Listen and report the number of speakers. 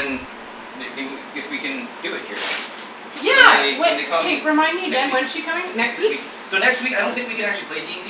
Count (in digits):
2